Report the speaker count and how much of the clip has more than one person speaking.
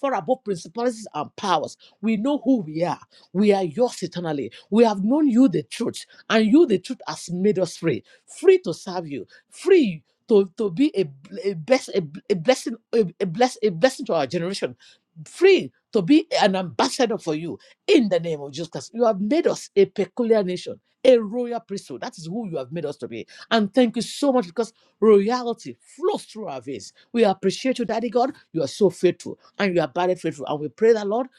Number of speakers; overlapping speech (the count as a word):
one, no overlap